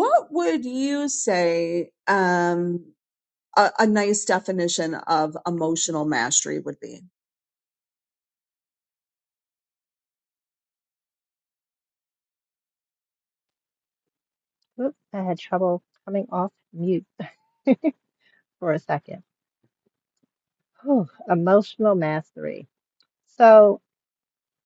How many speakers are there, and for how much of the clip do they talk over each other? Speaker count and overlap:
2, no overlap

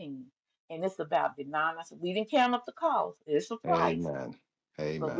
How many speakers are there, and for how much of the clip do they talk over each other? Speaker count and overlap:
2, about 10%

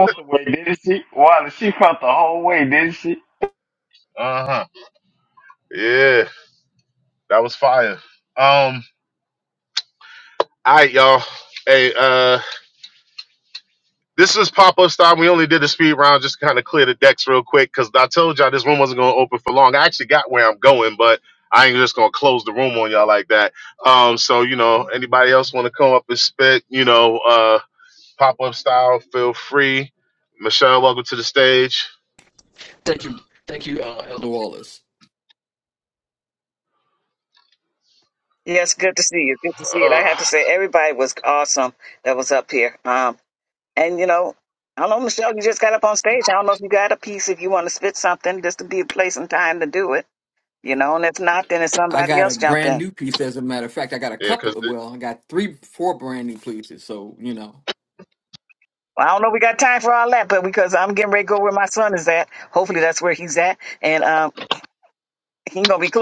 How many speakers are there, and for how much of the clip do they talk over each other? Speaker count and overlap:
4, about 3%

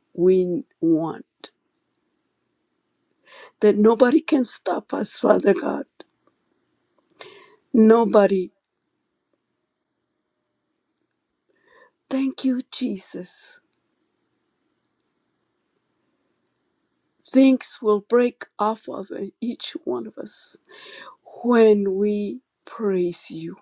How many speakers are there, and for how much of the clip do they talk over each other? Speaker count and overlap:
1, no overlap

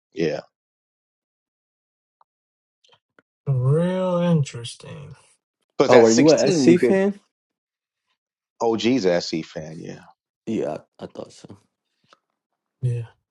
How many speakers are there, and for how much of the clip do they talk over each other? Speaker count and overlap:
3, about 8%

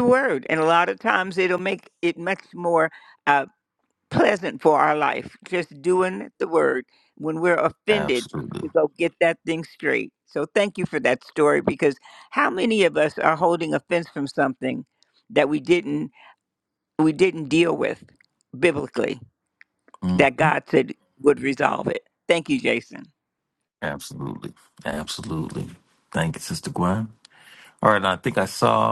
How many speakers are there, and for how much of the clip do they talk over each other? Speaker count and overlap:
2, about 2%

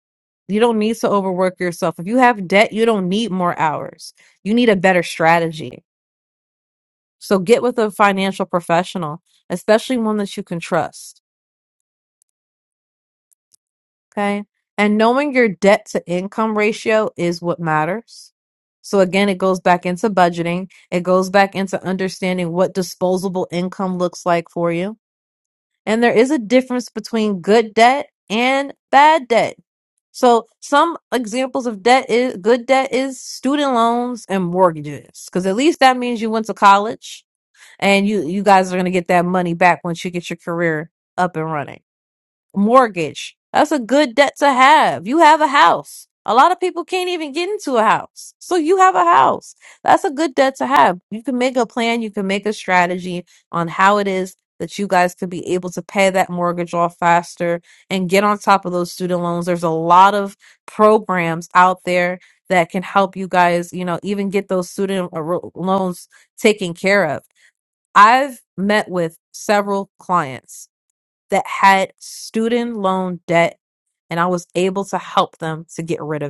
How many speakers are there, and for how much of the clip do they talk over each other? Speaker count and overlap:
1, no overlap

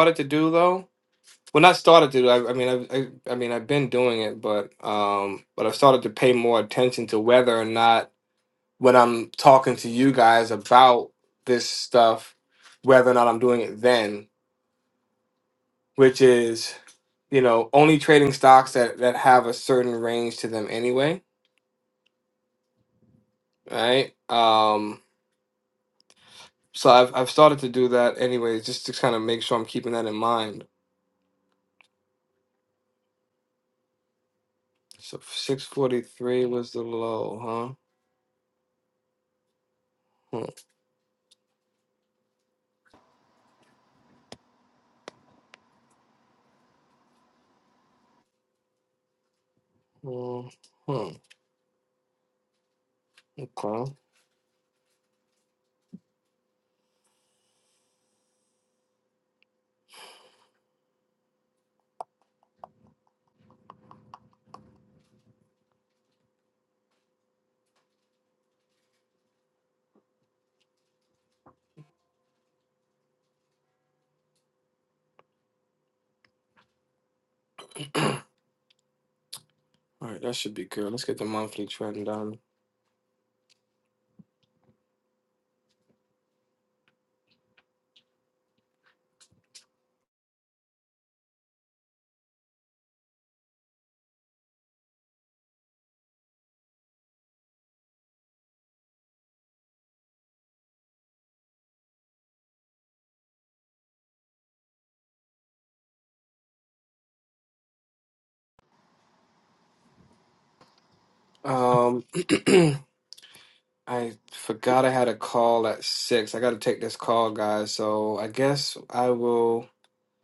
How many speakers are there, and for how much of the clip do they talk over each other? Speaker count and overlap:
1, no overlap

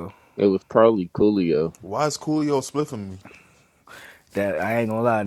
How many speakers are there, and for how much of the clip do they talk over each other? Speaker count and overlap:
3, no overlap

